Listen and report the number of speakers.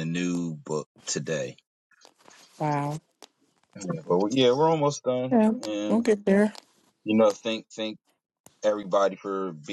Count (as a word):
two